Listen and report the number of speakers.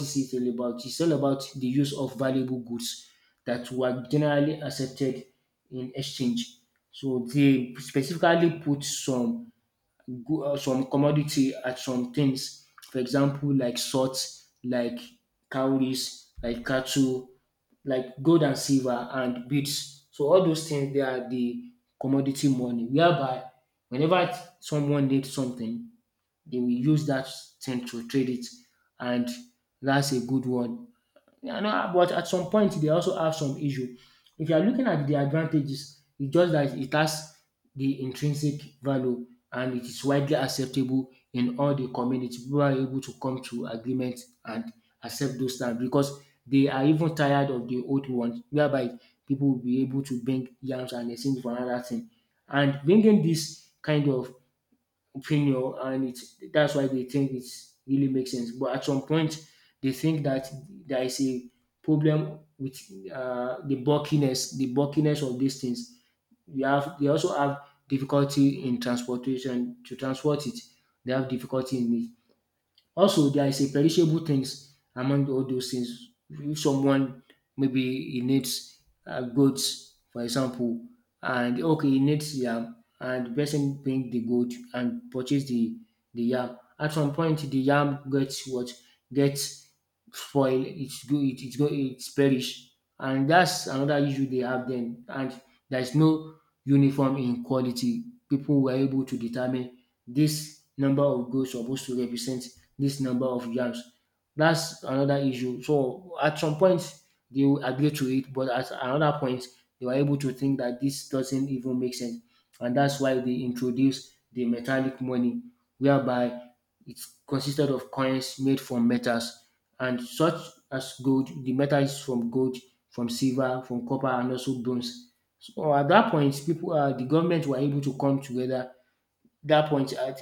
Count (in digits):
1